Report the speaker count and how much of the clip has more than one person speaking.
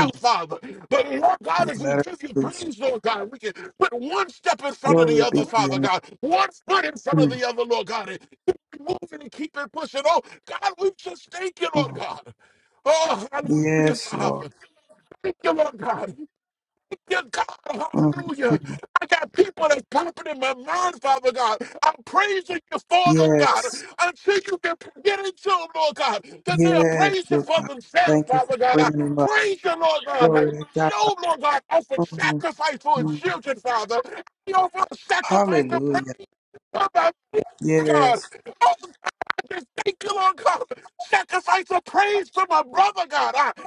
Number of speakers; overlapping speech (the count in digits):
2, about 23%